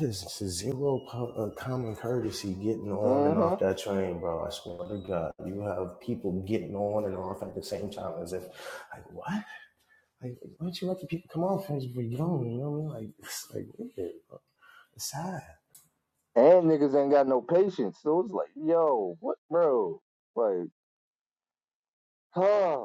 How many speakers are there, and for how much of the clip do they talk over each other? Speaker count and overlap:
2, about 2%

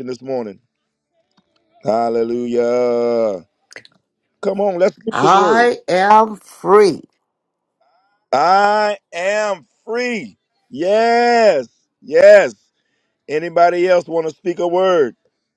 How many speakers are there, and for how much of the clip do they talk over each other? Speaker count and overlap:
2, about 4%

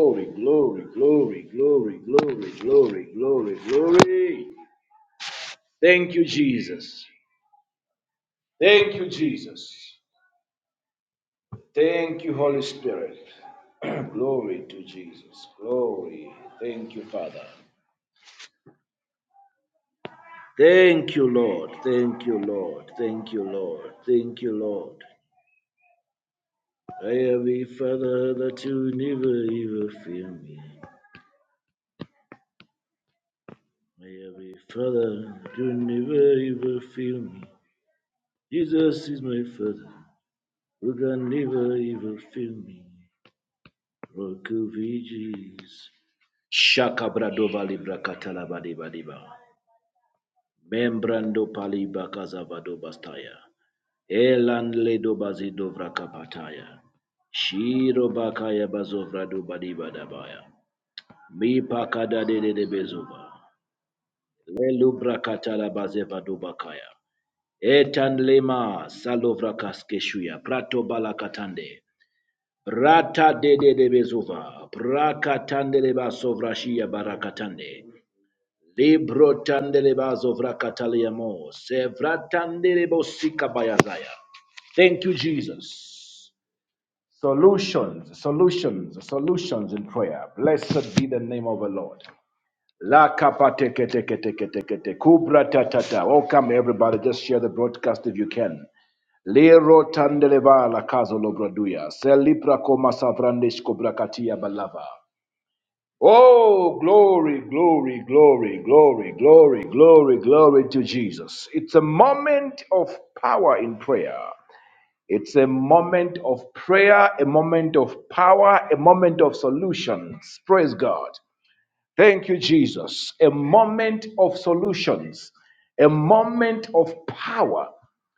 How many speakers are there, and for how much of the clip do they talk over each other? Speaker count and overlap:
1, no overlap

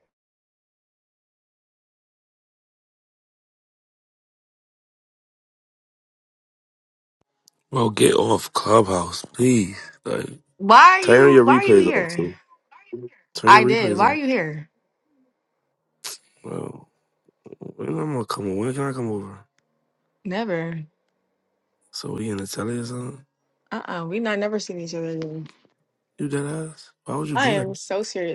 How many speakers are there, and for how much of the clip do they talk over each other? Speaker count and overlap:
2, about 8%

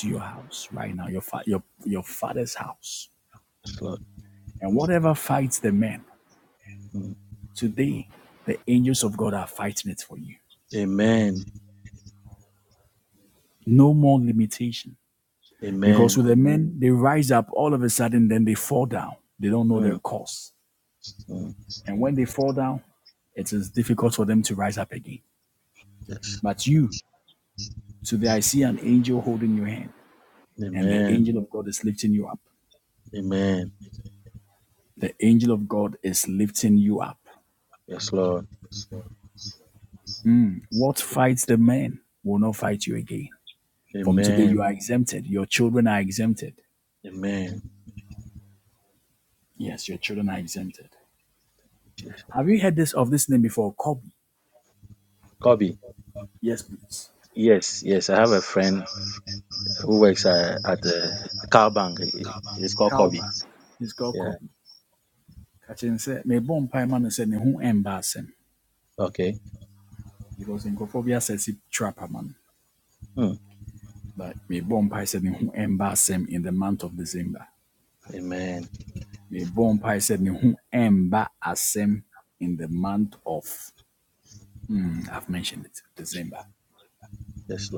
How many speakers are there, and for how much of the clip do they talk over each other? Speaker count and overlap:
2, about 3%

